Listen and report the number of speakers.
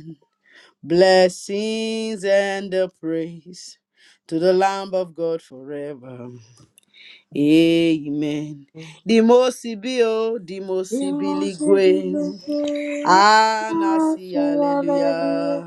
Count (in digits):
2